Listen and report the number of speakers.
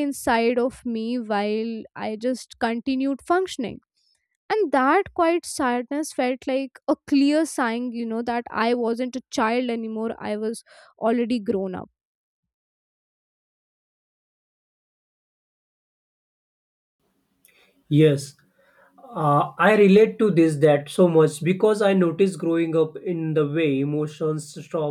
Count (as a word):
two